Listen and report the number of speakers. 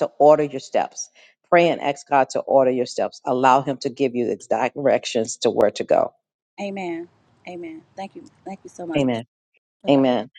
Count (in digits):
2